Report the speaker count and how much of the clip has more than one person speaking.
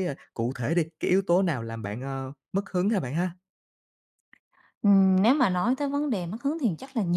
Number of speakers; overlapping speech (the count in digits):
2, no overlap